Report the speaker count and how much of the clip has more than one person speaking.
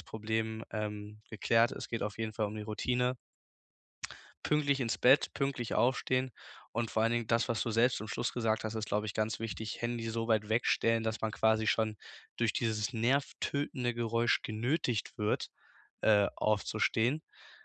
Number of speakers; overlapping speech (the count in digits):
1, no overlap